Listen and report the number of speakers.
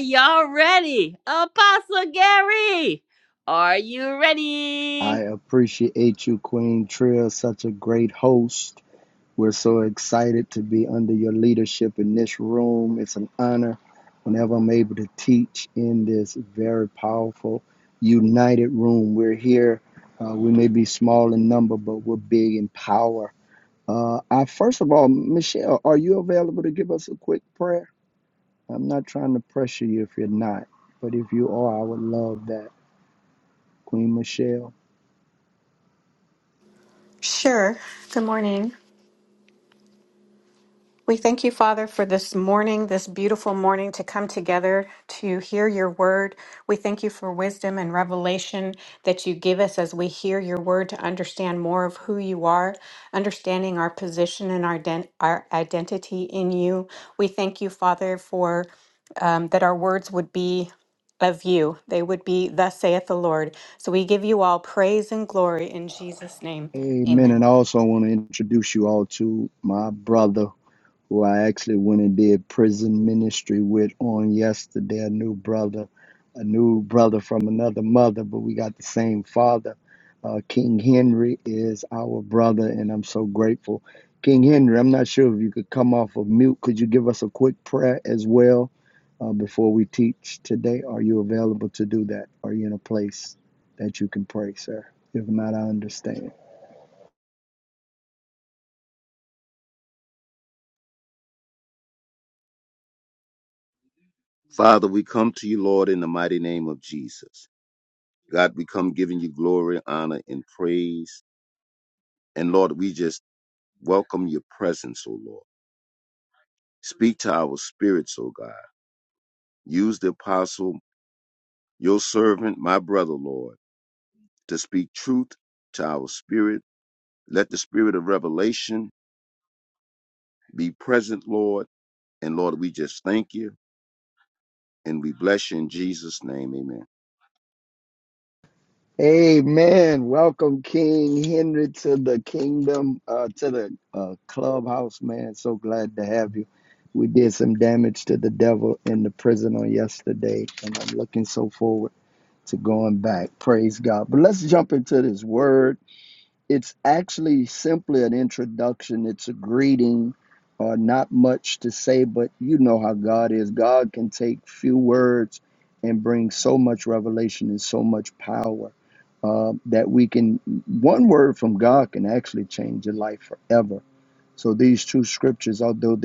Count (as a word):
four